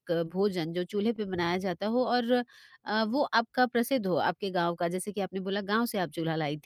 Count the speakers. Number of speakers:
1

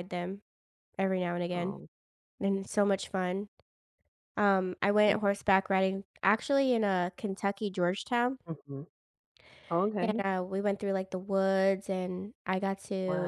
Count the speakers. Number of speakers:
2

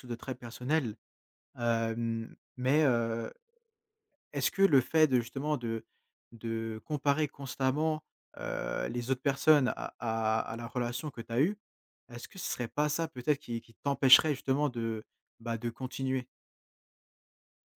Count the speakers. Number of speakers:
1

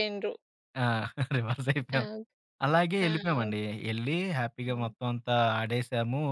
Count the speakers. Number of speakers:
2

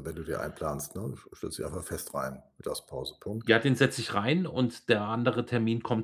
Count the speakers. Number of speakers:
2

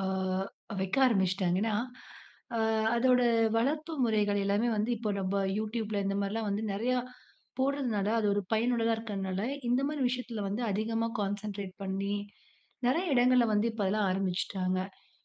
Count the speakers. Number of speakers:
1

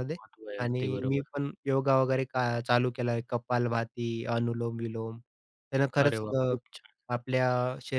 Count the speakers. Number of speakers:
2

